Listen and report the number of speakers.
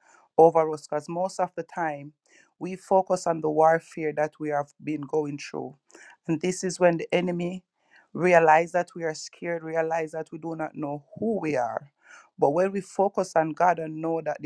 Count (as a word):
one